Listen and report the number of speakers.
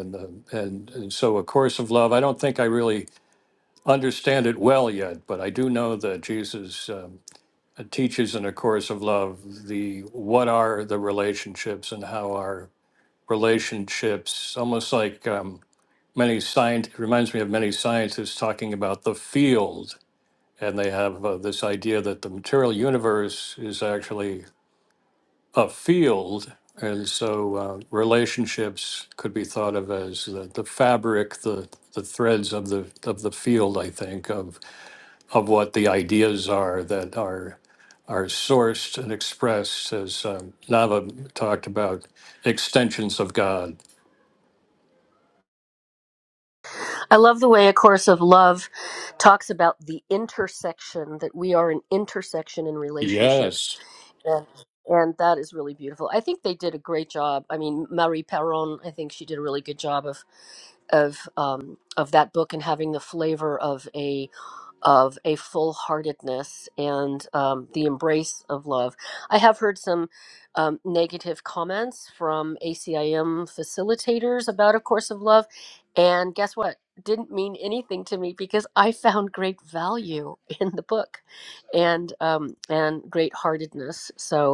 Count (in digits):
2